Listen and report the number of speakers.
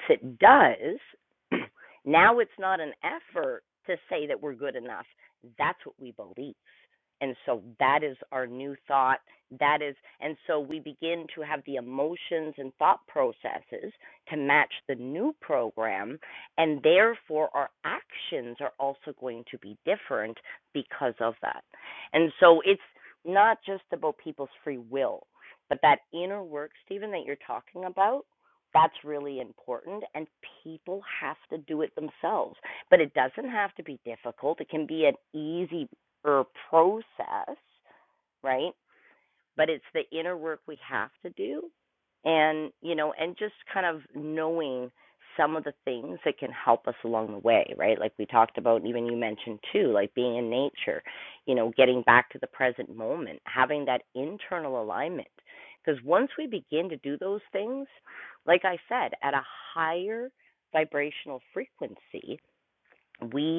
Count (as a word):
one